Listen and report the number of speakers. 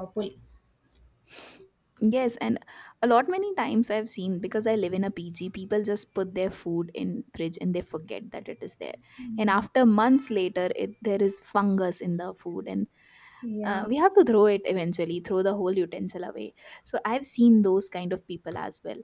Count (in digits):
2